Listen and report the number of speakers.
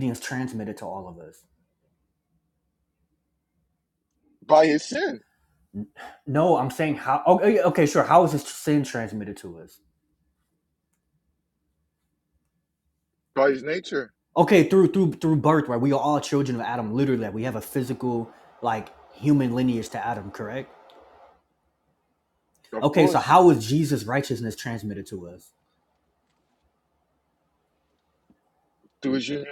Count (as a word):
two